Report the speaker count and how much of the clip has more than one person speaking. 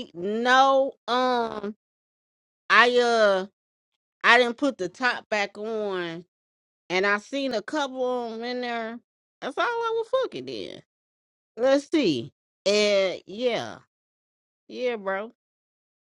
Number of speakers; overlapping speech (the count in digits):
1, no overlap